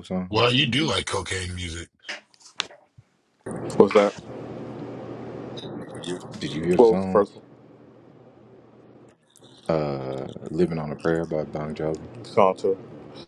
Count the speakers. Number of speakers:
3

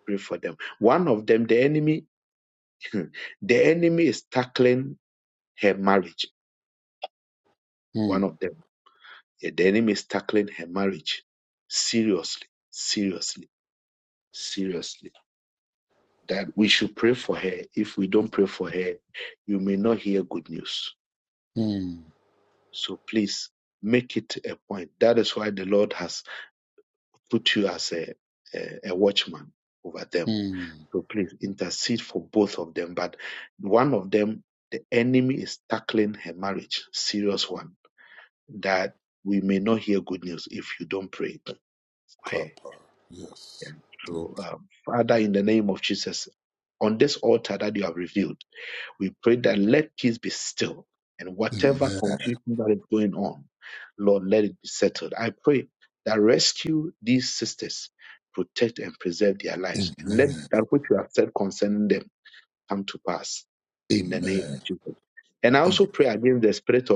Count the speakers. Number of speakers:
2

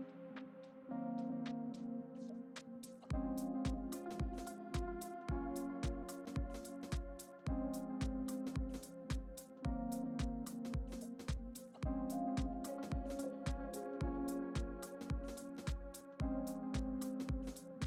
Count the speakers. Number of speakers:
0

